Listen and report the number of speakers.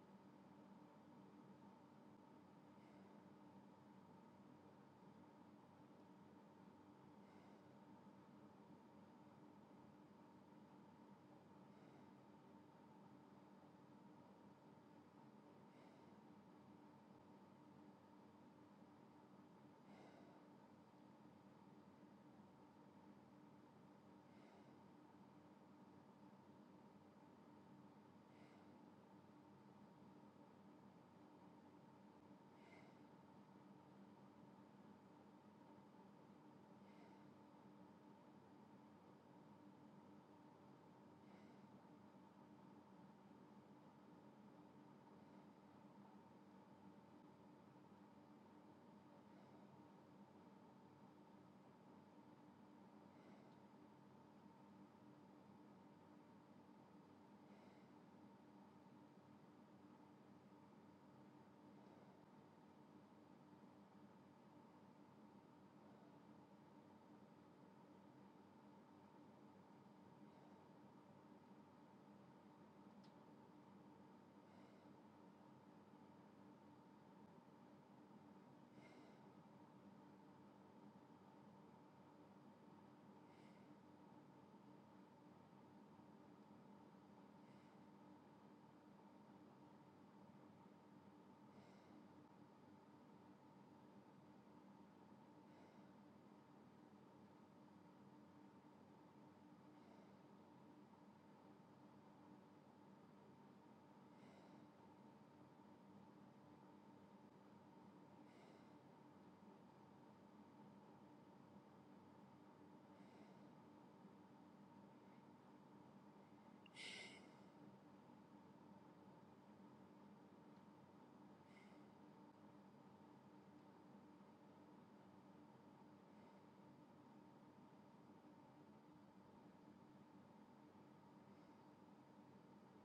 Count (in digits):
0